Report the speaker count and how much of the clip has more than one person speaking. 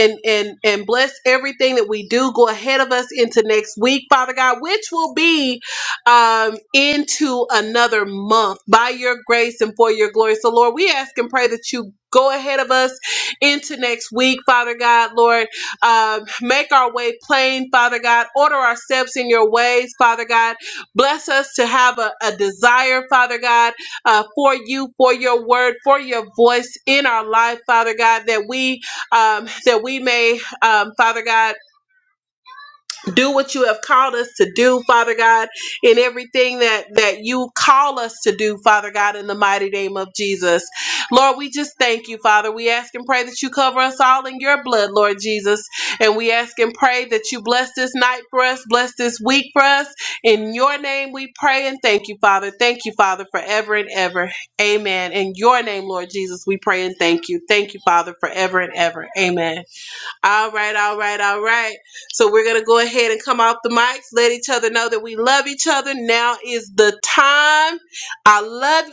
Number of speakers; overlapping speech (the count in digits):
1, no overlap